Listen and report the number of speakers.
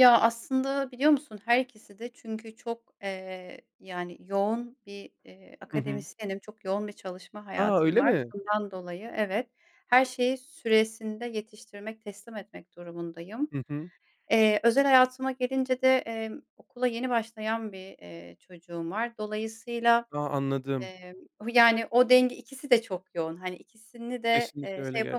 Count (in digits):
2